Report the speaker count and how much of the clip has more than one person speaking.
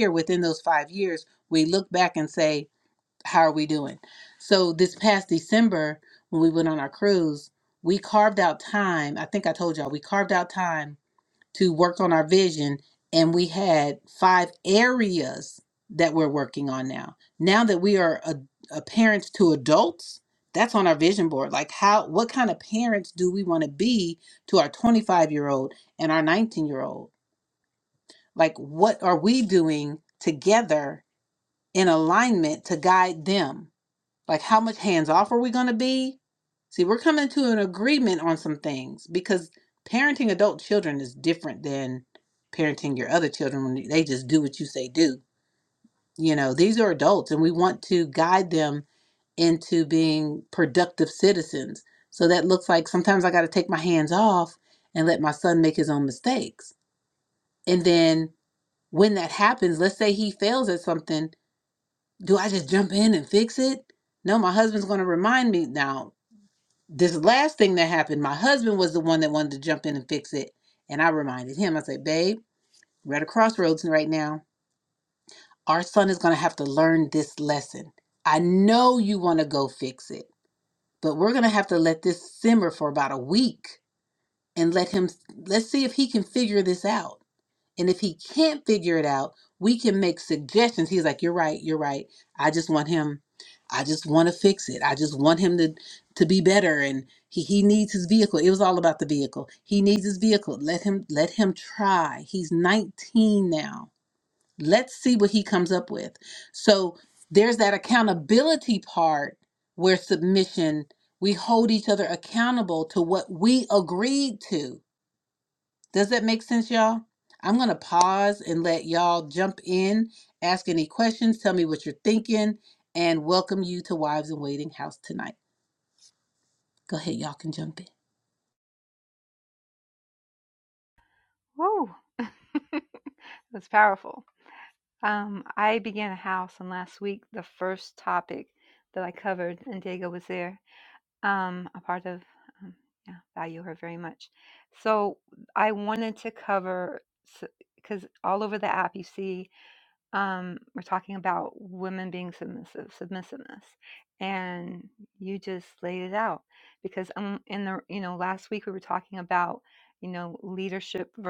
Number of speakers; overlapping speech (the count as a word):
two, no overlap